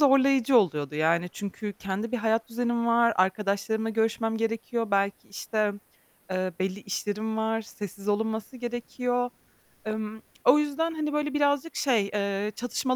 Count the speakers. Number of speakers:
one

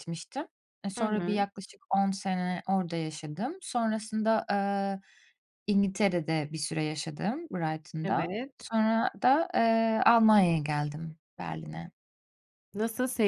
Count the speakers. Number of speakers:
two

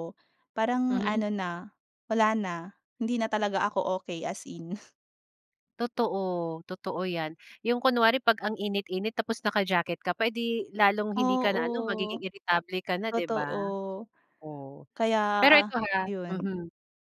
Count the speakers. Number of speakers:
two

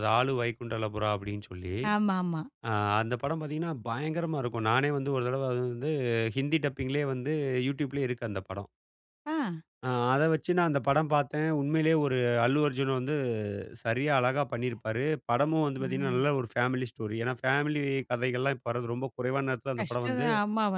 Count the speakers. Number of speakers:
two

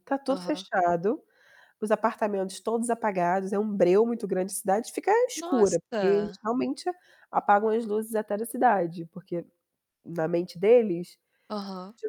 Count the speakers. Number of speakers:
two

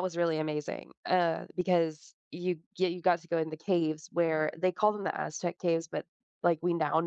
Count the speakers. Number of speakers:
one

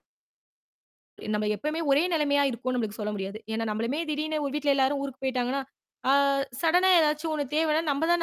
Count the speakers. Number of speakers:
one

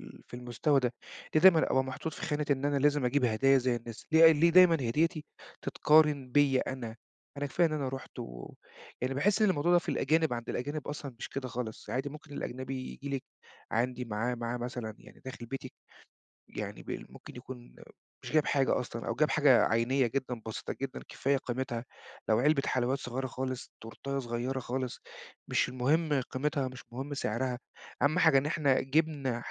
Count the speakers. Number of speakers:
one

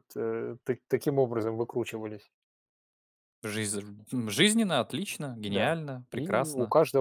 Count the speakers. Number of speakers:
two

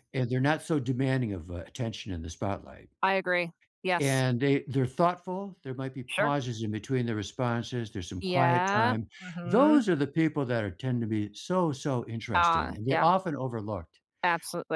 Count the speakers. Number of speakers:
two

